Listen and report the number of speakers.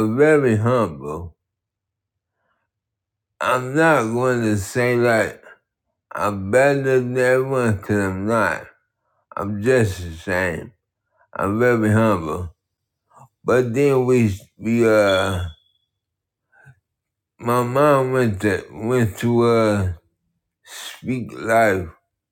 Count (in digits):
1